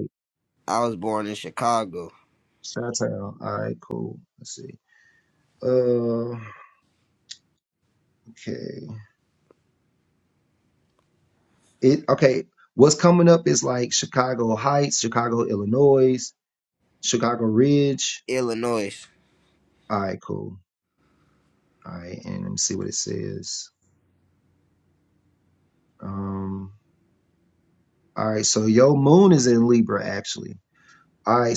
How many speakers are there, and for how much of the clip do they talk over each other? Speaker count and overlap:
2, no overlap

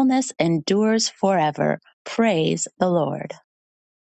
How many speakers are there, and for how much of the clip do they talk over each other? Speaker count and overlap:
1, no overlap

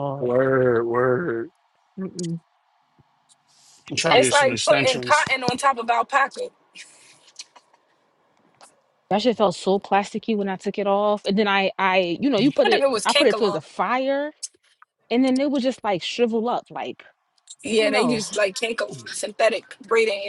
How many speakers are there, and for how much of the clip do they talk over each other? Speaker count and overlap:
3, about 13%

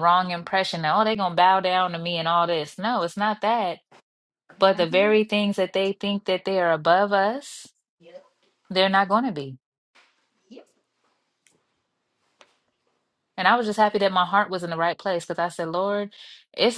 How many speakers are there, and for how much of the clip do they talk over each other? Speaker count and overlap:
1, no overlap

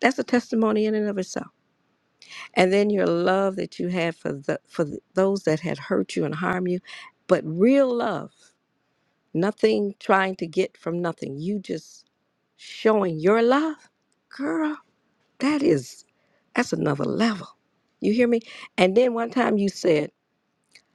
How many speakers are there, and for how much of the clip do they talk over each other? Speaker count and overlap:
1, no overlap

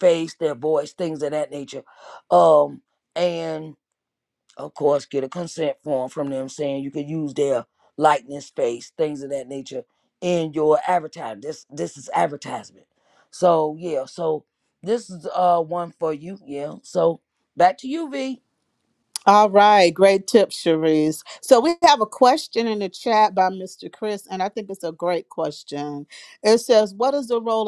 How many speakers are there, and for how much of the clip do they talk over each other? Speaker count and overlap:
2, no overlap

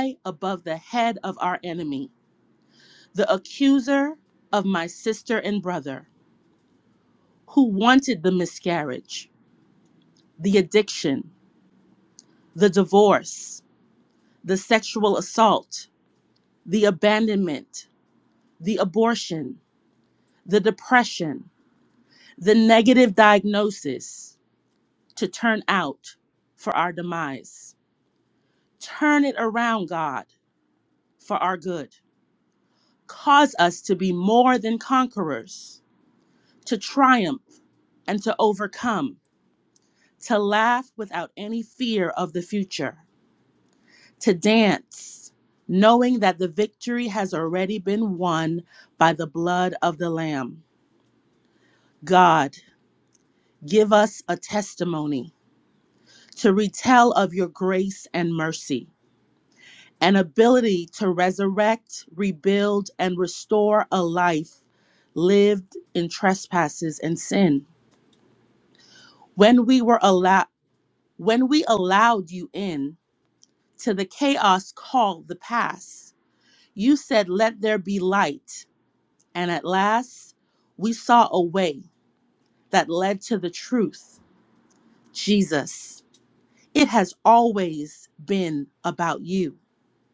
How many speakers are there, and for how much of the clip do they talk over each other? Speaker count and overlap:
1, no overlap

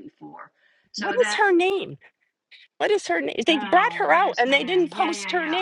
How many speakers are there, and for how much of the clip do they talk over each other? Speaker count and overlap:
2, about 46%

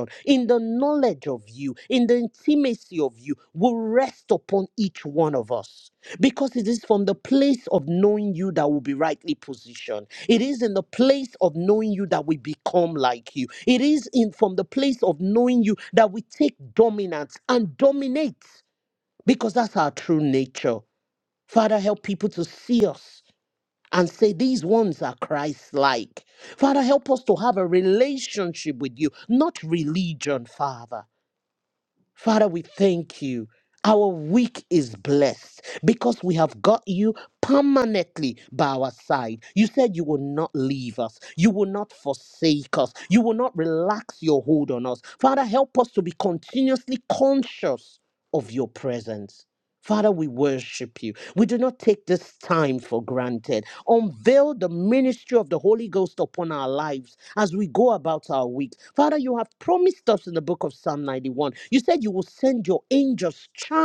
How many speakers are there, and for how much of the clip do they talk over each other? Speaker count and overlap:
1, no overlap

